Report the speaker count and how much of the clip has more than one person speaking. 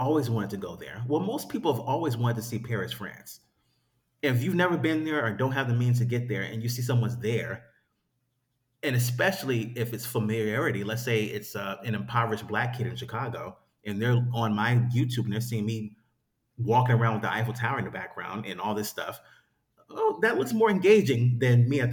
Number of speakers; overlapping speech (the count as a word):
one, no overlap